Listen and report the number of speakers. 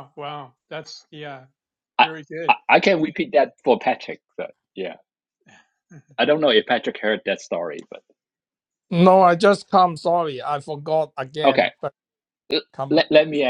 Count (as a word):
three